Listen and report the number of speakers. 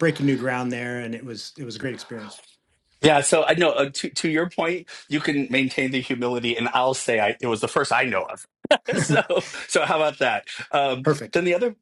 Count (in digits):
2